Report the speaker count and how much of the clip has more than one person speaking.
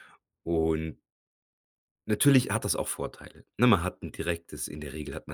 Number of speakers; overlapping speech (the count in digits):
1, no overlap